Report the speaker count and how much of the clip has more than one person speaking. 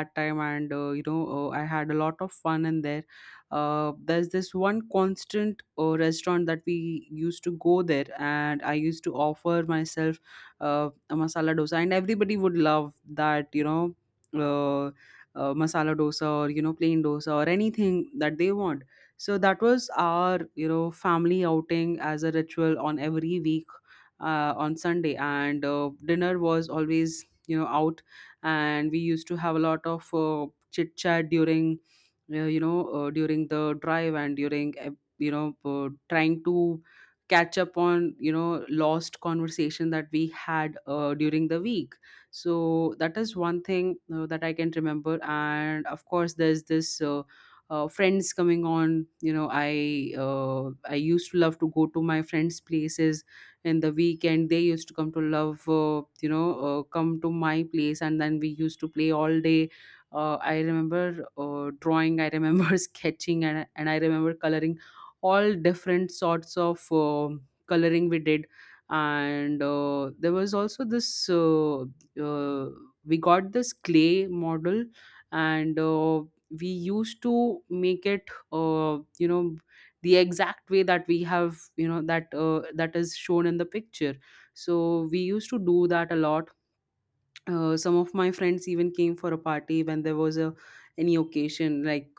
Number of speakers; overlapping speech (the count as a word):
one, no overlap